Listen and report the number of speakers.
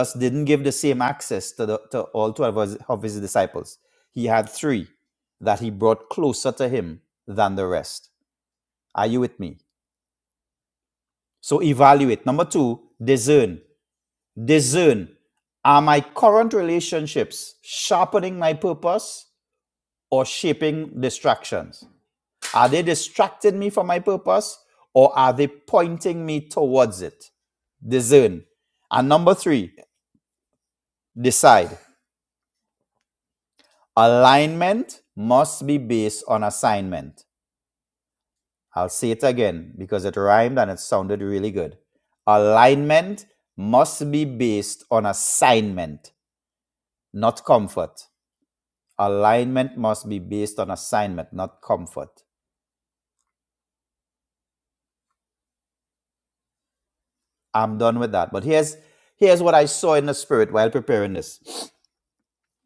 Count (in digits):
1